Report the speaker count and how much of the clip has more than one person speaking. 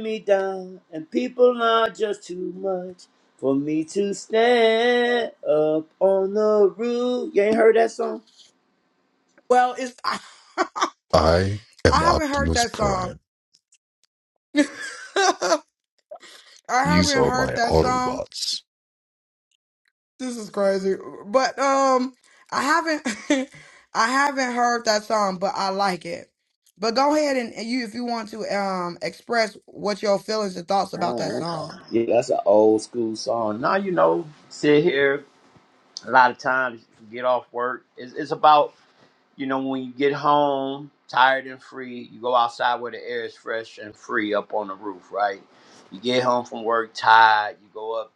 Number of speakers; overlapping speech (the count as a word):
three, about 7%